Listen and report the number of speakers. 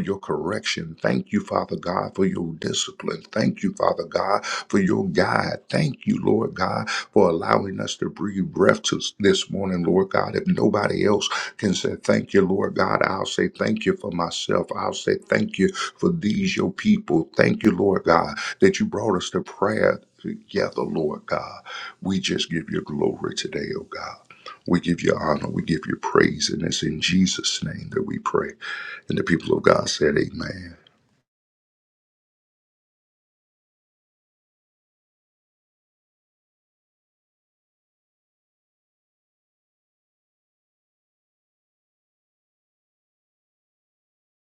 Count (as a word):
one